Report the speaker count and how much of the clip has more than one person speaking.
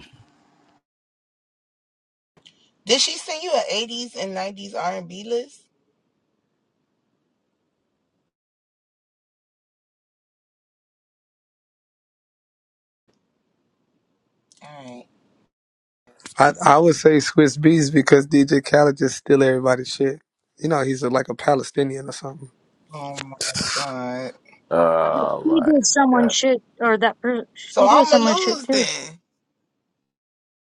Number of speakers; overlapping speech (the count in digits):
4, about 7%